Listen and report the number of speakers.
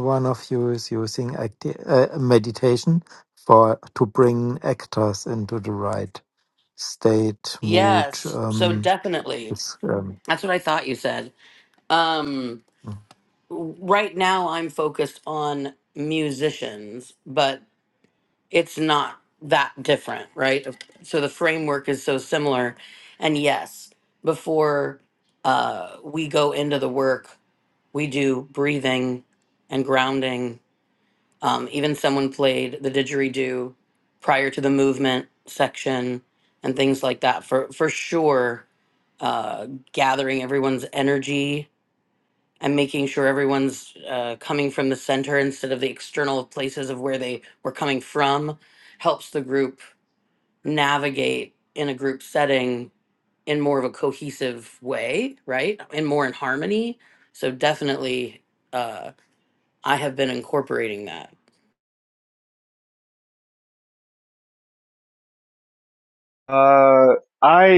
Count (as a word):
three